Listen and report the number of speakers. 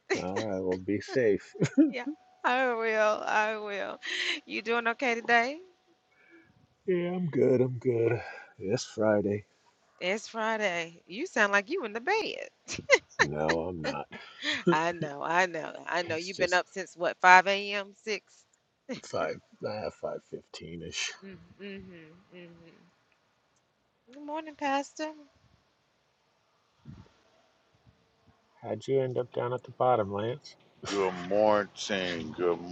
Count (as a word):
three